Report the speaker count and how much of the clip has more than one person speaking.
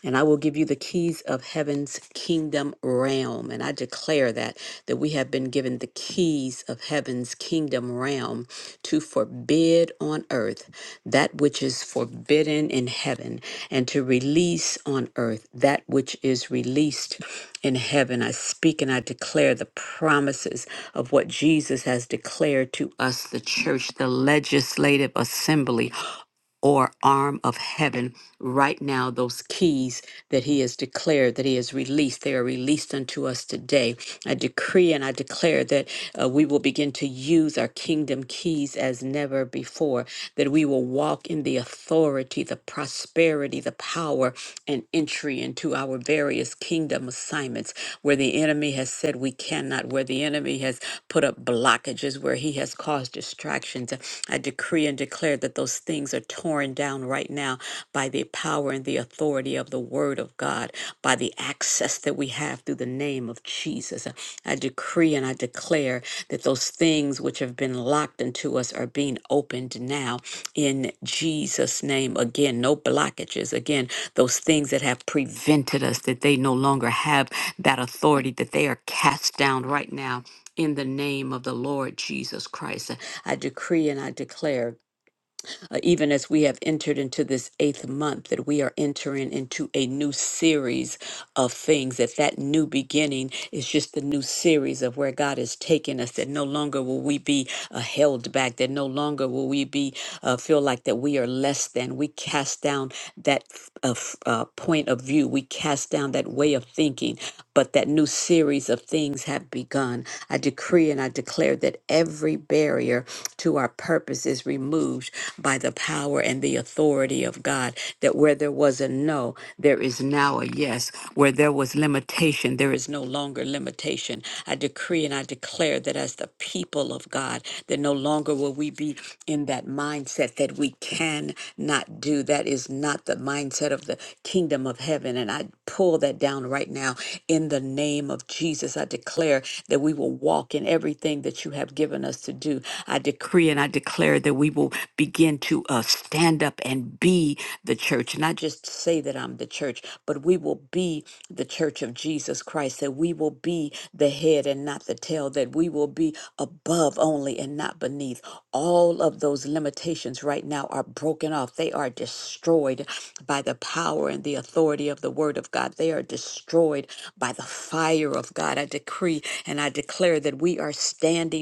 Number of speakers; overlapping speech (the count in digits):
1, no overlap